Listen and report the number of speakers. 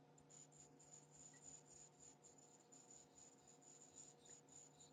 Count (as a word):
zero